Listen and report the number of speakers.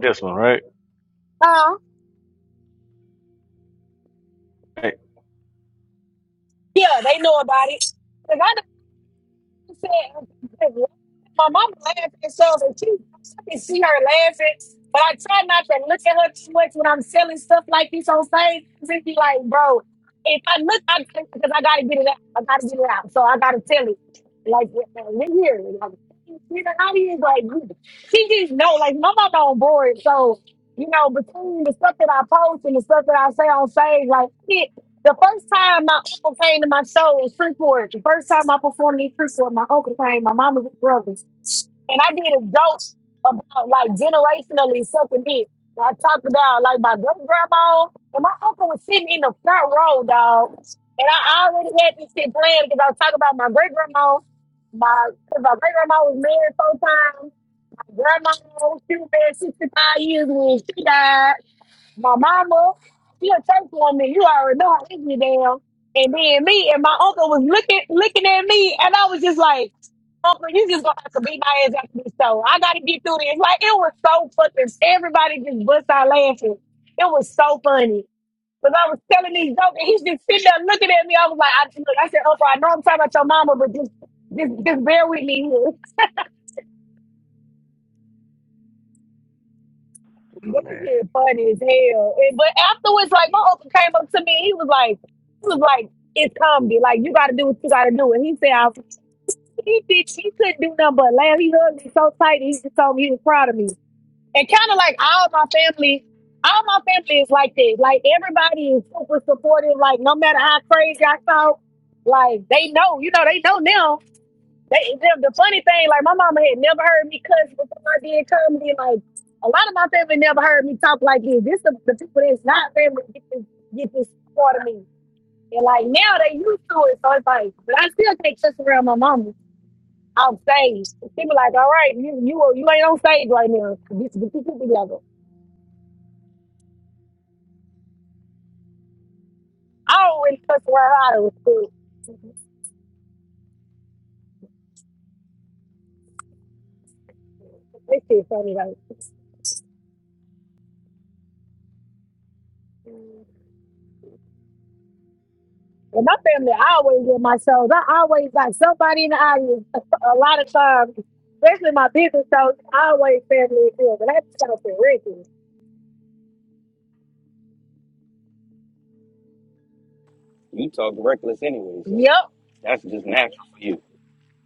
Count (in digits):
3